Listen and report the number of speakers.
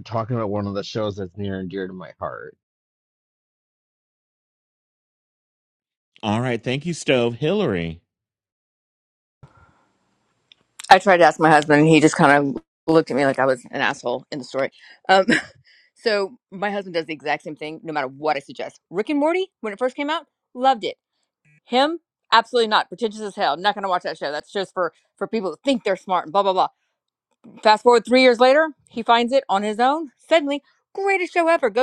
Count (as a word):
three